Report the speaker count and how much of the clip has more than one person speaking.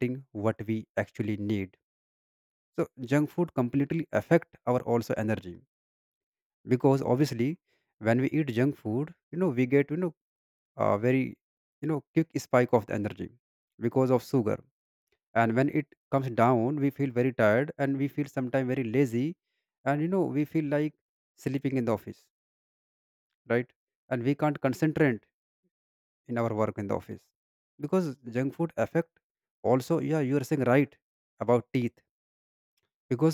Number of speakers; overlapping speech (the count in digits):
1, no overlap